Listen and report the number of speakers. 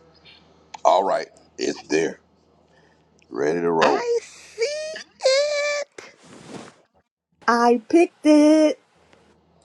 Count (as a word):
three